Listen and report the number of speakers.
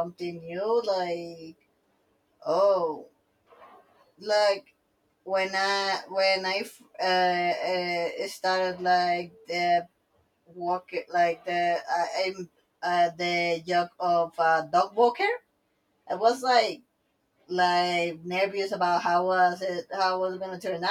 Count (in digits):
1